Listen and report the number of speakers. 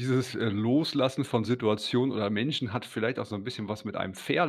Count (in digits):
1